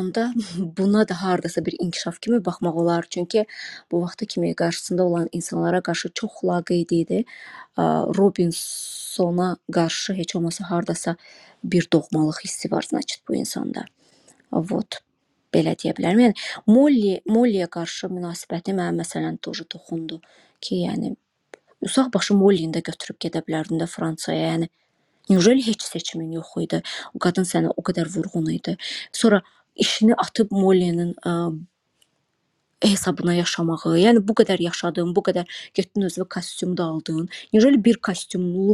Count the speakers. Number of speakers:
1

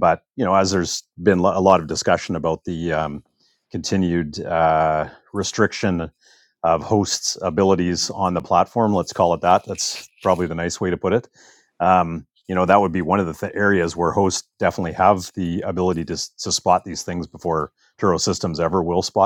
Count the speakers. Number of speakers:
1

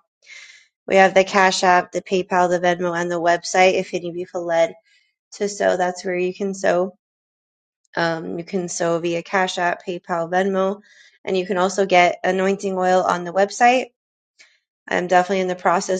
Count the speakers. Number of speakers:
1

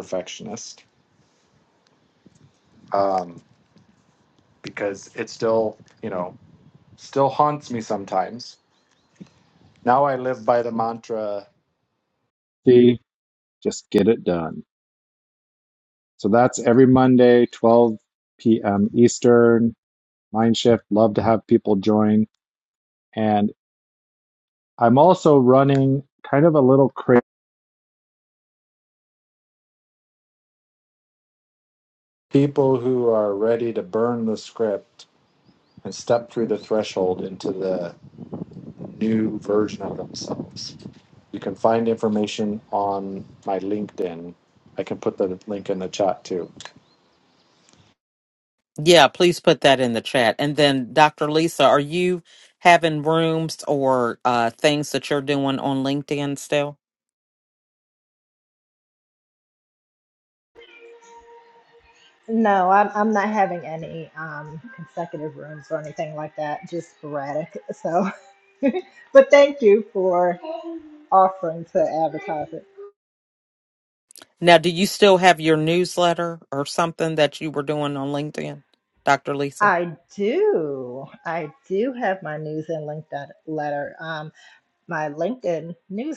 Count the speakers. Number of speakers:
3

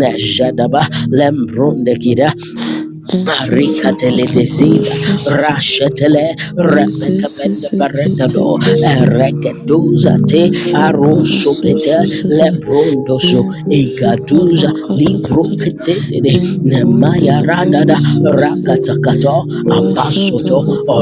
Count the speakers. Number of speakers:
2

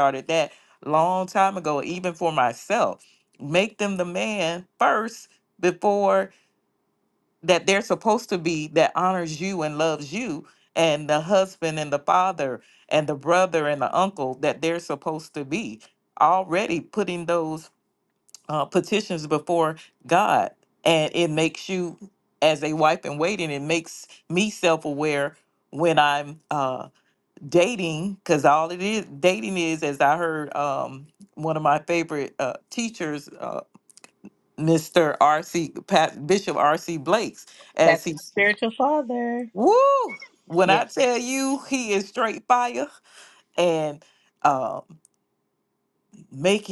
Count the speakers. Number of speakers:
2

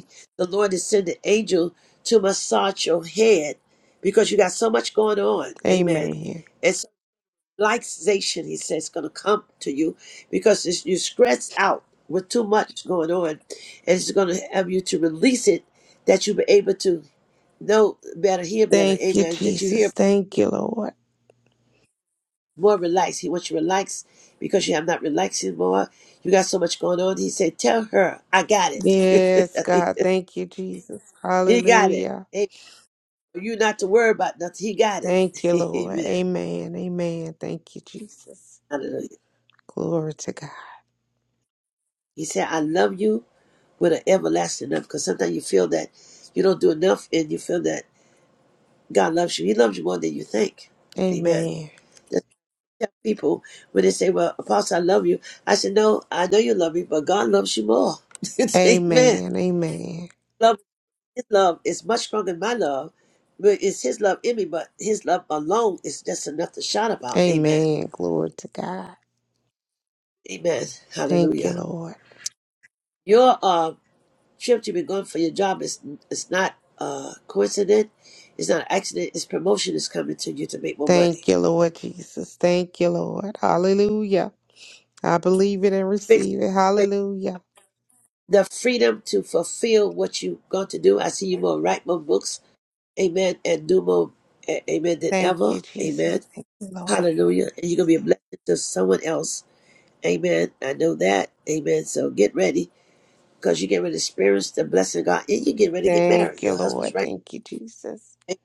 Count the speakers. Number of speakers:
2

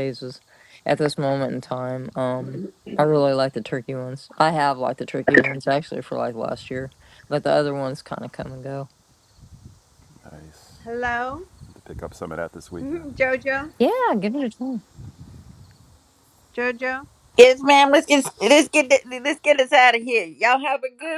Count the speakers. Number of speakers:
4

